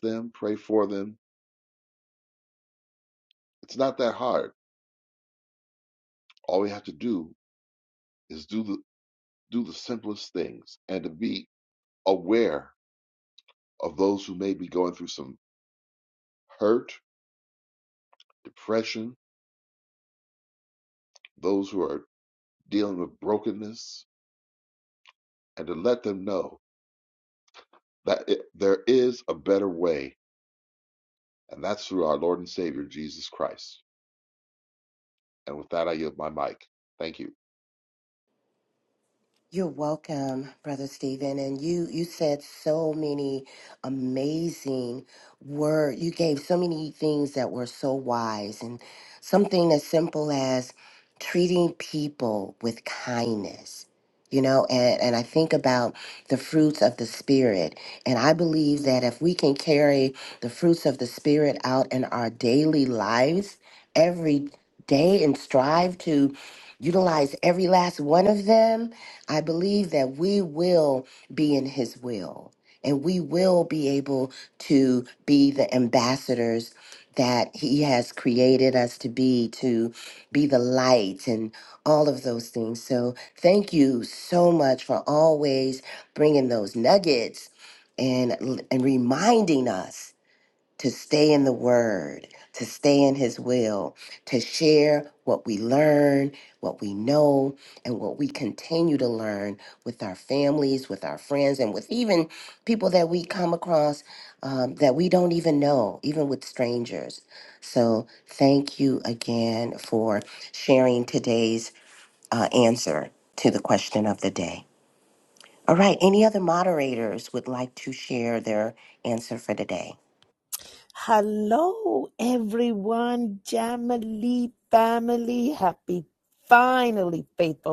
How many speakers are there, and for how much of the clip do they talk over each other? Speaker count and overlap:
3, no overlap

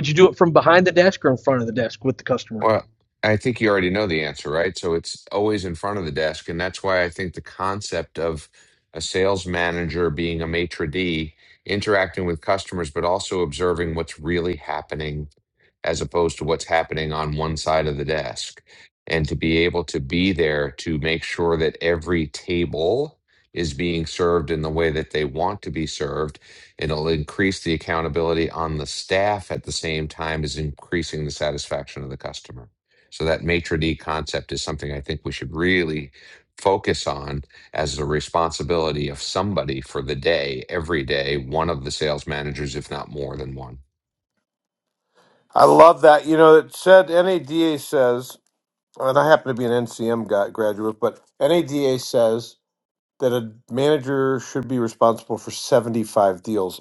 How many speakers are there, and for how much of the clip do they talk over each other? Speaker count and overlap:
3, under 1%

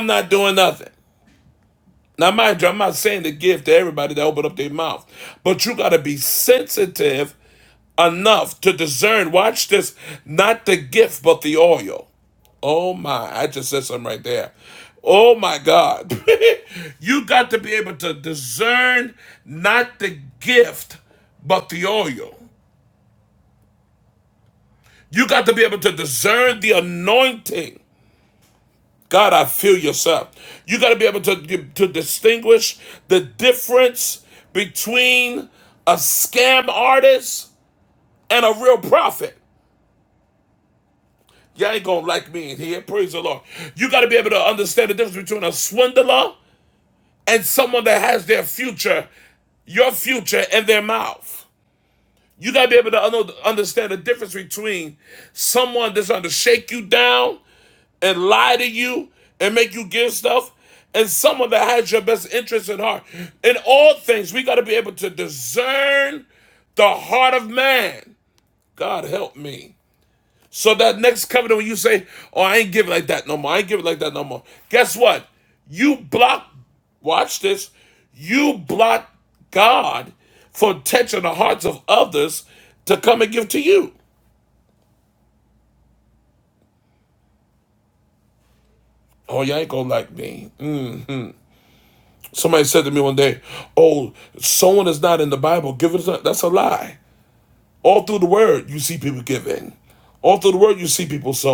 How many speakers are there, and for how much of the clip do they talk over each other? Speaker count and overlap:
1, no overlap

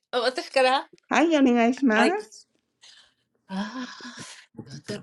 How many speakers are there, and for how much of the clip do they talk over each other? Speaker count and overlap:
2, about 4%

